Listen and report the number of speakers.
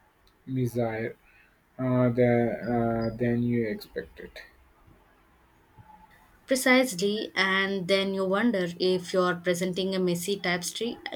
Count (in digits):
2